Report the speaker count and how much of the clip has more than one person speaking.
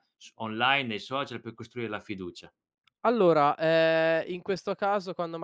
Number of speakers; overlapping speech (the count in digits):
2, no overlap